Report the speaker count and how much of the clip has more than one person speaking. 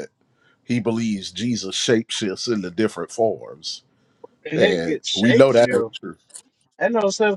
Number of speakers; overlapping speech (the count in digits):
2, about 18%